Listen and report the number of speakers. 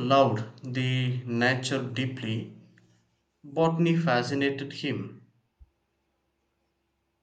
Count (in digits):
1